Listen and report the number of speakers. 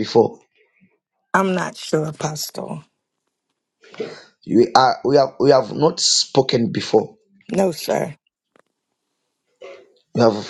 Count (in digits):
2